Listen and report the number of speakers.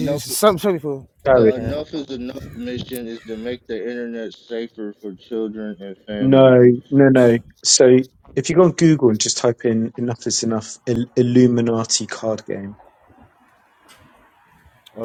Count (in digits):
3